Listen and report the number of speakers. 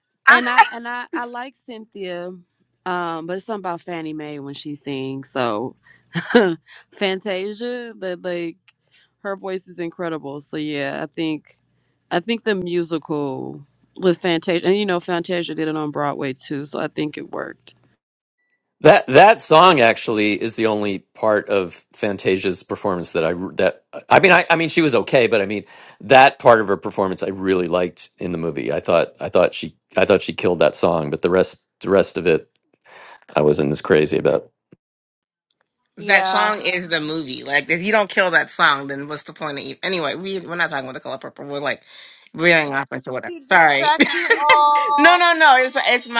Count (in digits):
4